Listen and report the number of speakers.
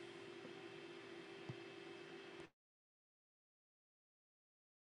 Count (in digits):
0